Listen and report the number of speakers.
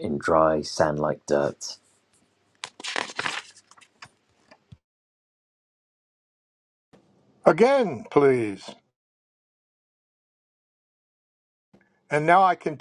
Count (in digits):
2